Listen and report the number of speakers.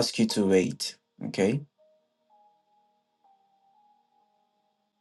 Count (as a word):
one